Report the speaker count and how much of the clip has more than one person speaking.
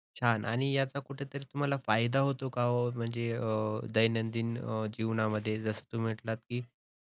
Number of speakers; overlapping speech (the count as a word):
one, no overlap